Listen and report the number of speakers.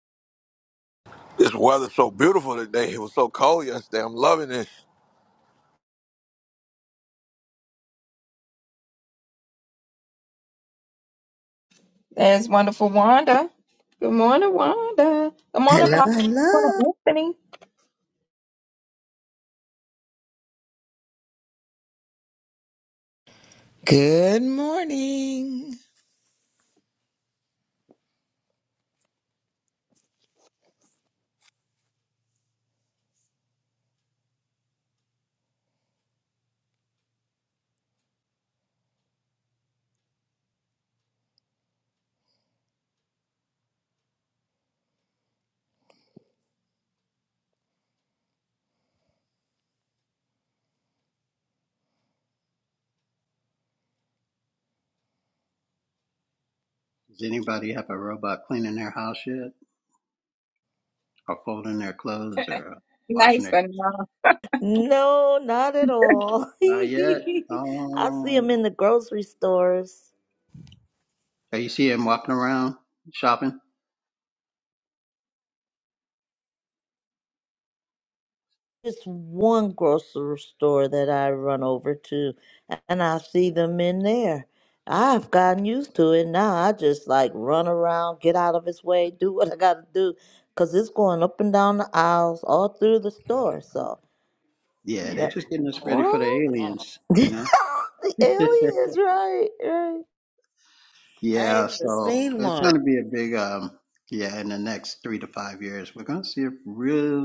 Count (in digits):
5